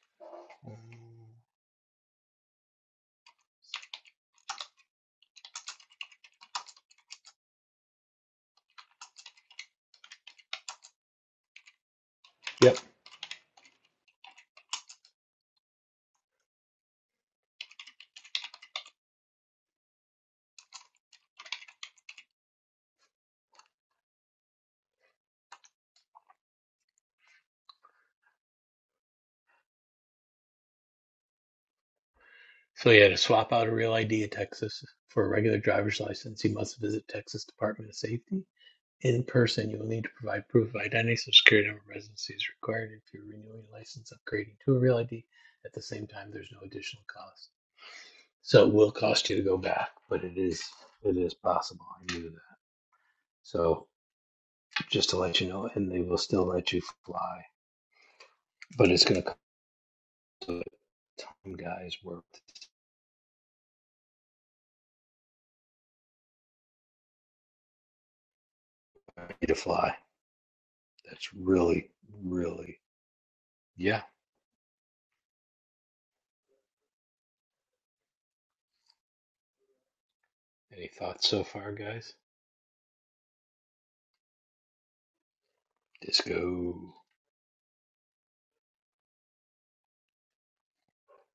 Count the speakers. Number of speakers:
one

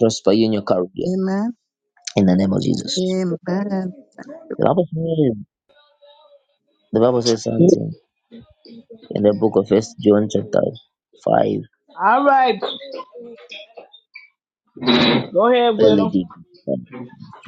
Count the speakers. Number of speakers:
three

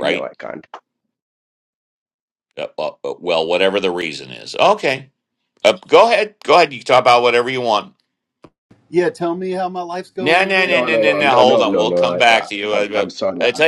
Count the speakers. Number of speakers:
three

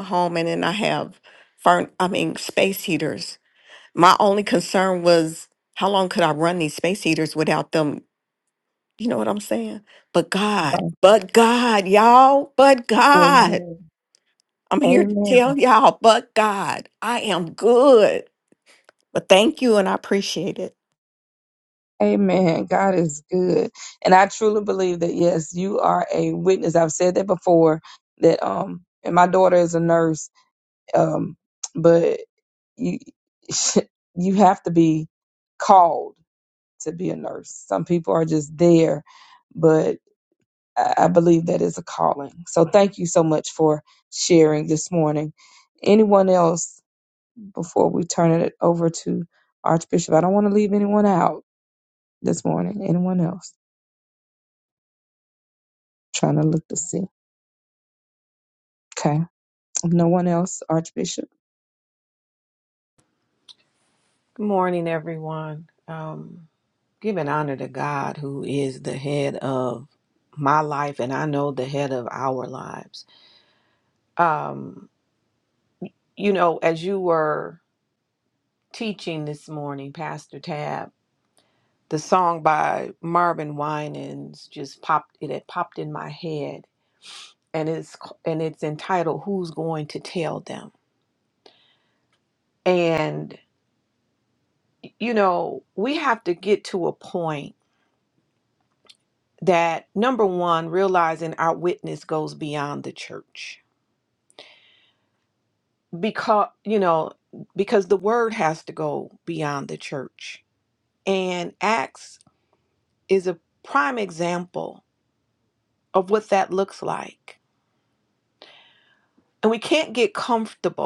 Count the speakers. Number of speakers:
three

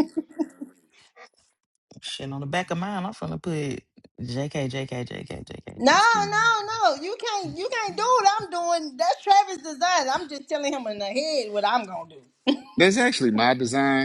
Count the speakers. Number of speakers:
three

